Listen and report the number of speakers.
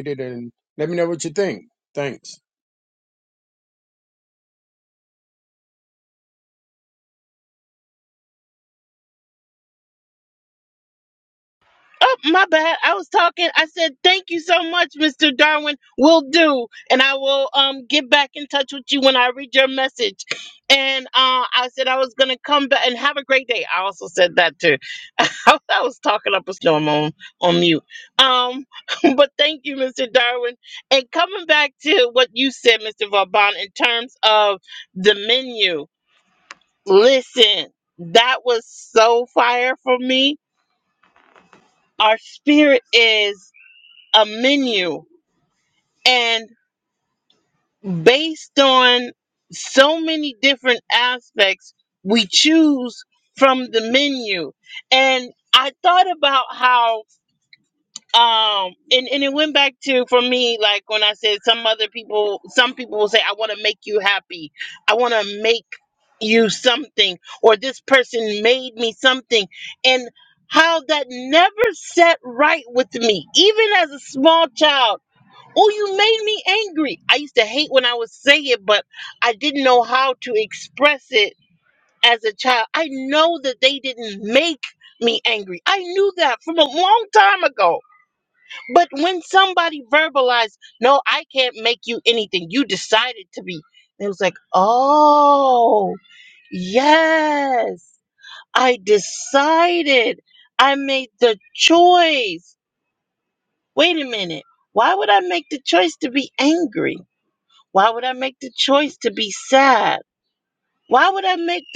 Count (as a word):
two